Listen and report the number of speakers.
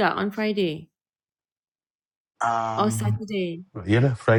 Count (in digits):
2